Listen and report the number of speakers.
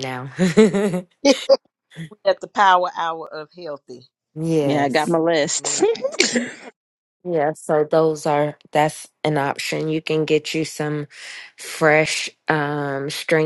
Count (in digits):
3